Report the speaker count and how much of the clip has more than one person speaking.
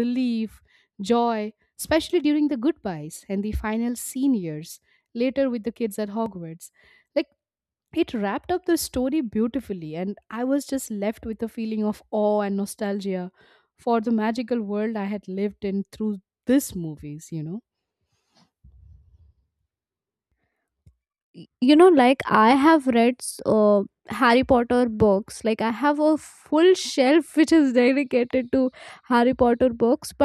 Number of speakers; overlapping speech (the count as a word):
two, no overlap